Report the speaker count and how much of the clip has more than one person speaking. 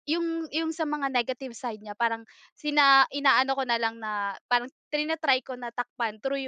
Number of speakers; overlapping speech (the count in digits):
1, no overlap